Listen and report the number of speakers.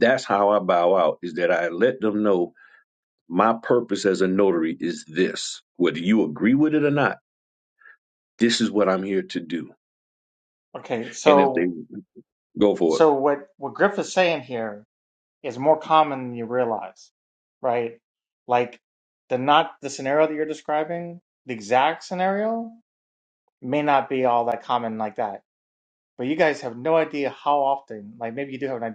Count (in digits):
2